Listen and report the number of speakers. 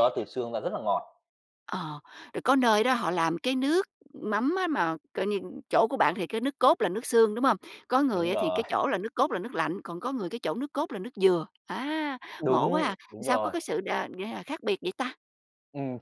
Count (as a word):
two